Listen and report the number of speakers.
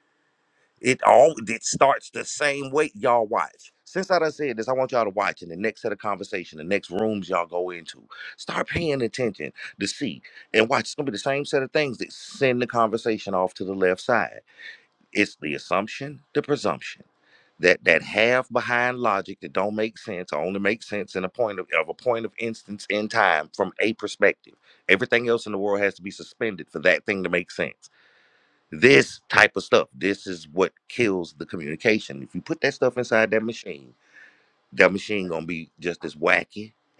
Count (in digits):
1